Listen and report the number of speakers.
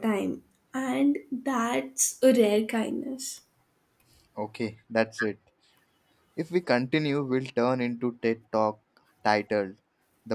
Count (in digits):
2